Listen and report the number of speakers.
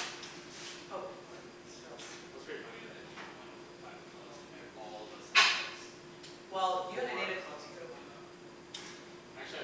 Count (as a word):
two